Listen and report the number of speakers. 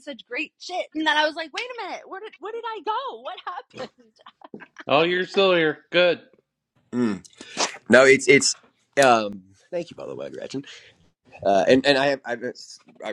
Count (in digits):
3